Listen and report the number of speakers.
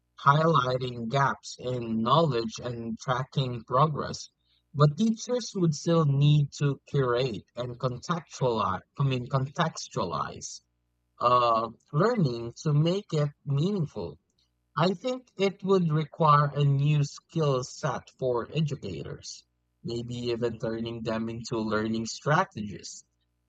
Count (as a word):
one